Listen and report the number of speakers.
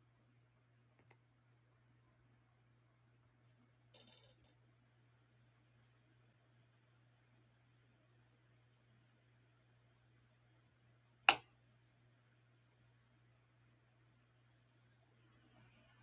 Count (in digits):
0